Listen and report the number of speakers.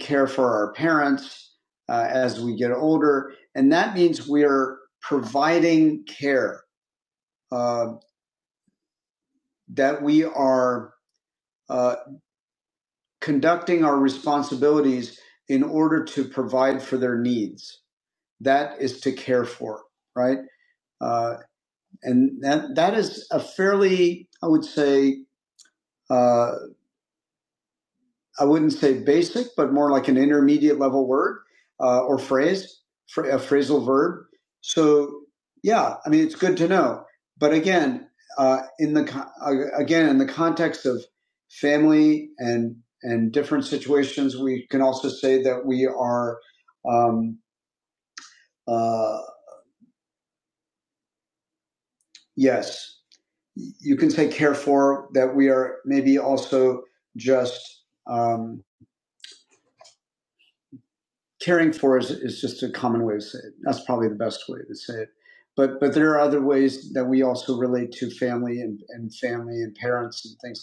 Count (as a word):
one